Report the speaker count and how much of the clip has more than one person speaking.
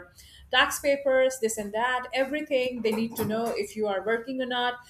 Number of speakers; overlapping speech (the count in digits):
1, no overlap